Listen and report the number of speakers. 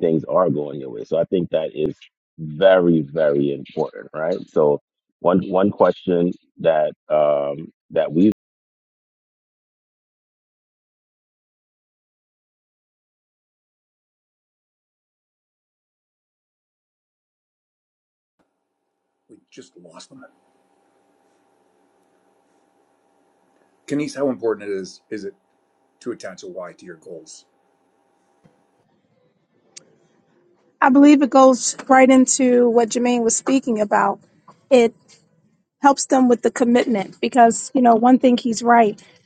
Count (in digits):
3